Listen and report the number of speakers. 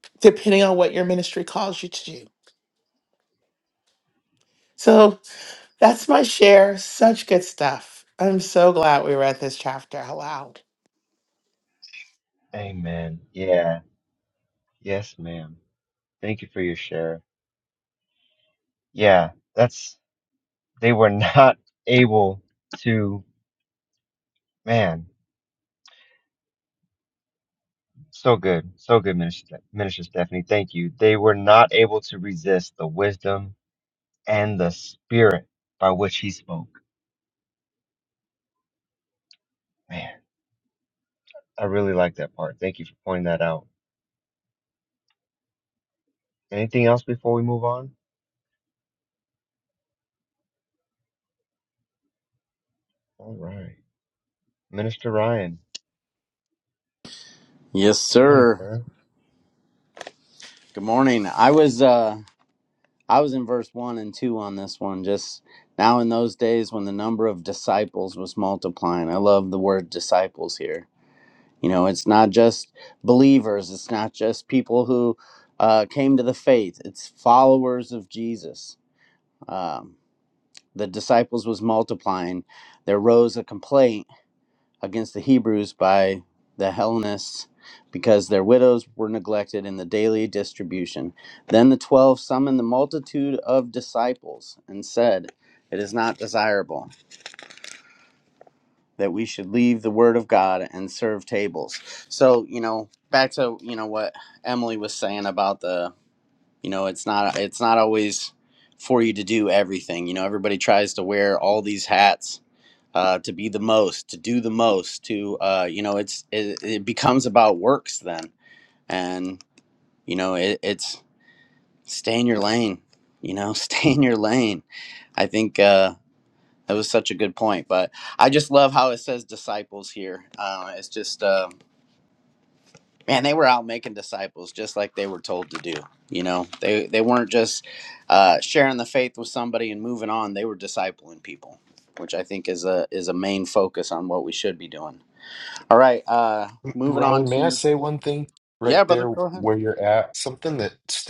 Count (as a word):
four